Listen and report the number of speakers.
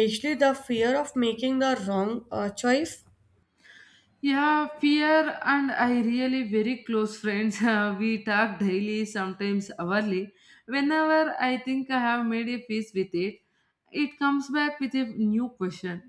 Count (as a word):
two